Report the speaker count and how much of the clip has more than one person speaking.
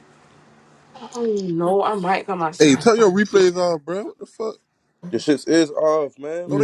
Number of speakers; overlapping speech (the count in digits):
3, about 7%